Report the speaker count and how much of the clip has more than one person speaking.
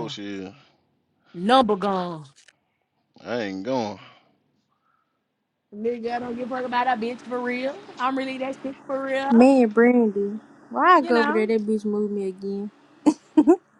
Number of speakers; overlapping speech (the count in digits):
3, about 6%